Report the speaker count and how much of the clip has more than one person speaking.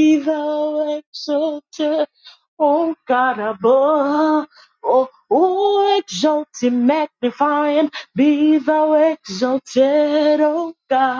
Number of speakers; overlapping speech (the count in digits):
1, no overlap